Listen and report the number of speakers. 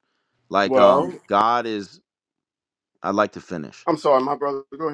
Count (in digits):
2